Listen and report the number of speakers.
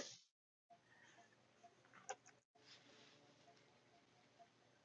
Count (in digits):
0